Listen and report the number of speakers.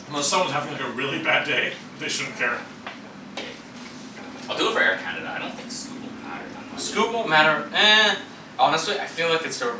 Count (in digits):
3